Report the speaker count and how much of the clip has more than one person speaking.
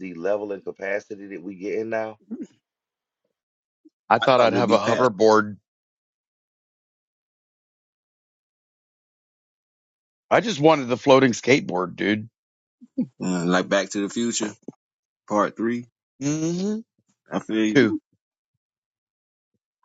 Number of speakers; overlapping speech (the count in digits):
3, about 5%